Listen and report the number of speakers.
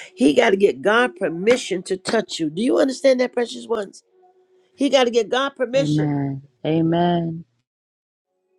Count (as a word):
two